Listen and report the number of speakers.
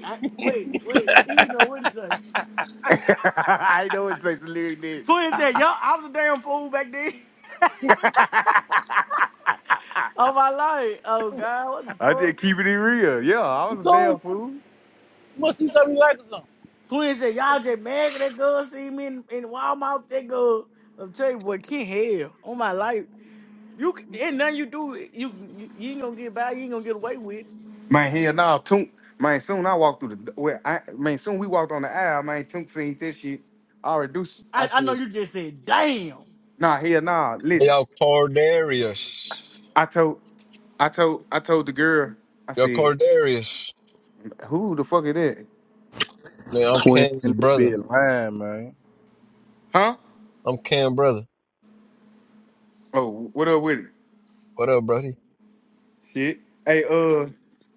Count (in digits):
5